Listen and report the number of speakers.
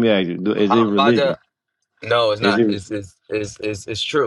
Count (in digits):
2